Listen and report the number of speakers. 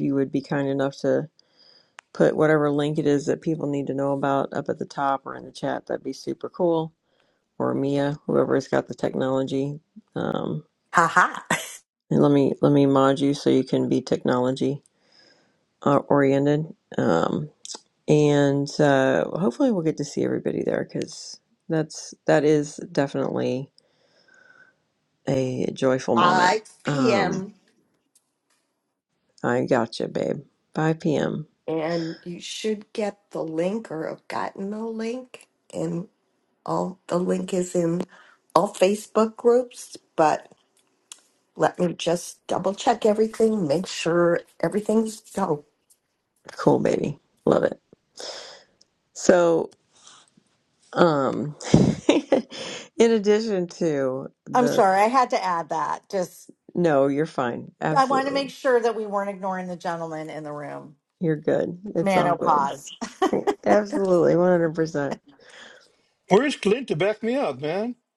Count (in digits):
4